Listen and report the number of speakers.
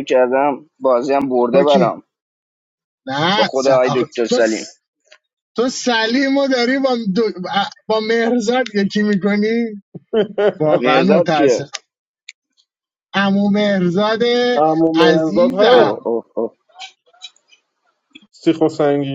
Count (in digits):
3